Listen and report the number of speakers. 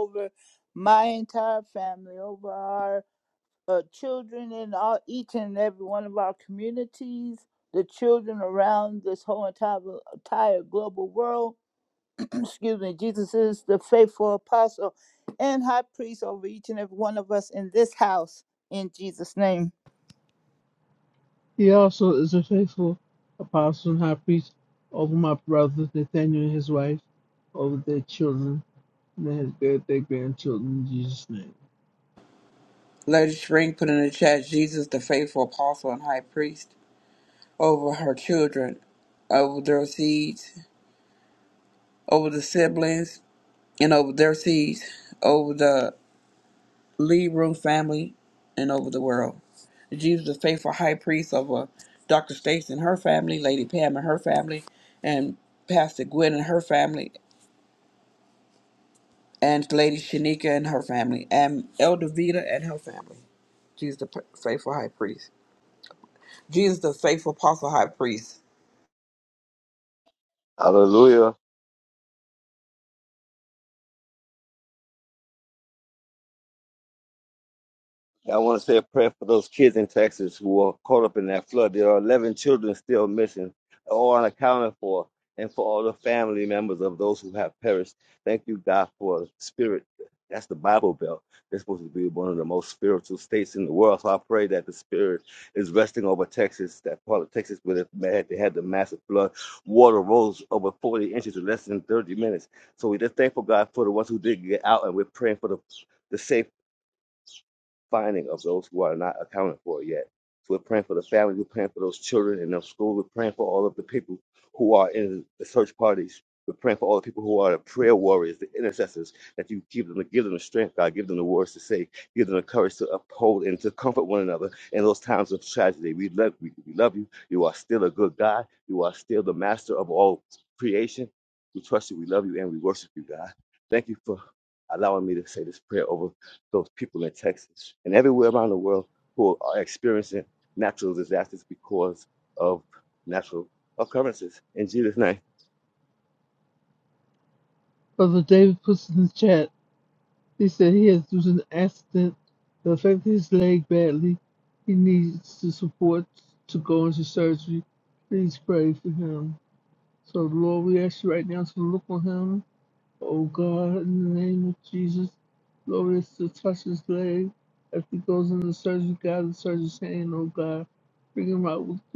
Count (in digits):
4